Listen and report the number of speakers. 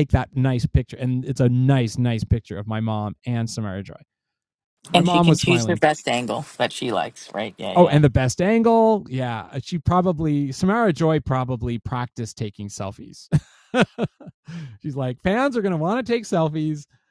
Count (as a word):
two